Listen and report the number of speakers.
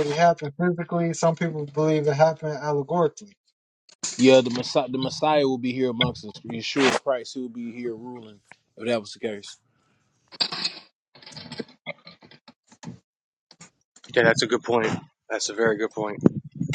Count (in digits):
3